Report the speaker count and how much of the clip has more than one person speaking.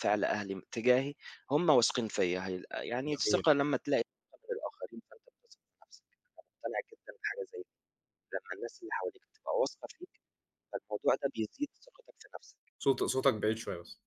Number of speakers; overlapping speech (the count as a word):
two, about 1%